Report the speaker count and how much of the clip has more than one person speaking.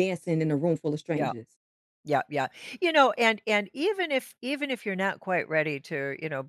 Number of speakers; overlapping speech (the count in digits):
2, about 3%